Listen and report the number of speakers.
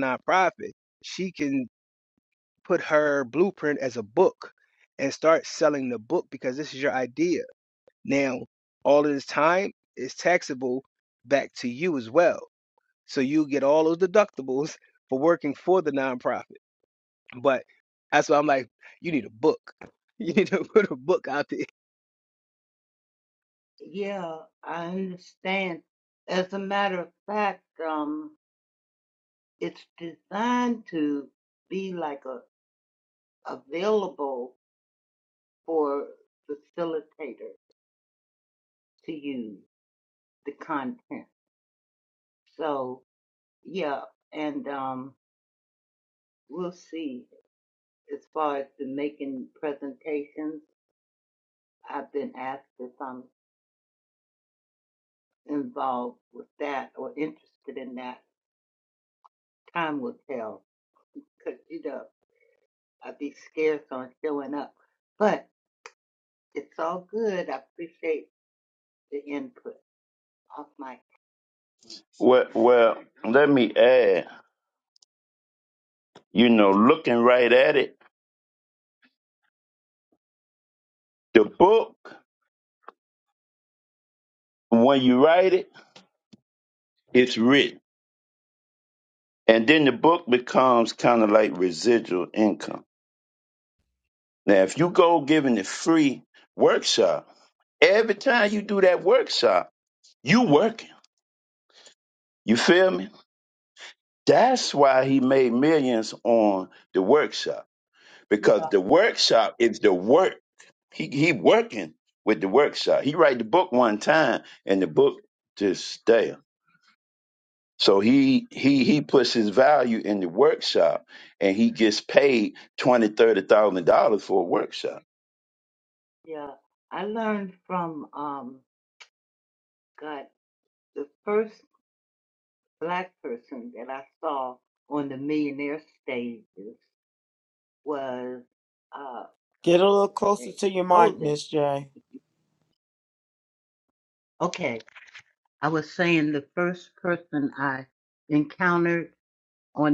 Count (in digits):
4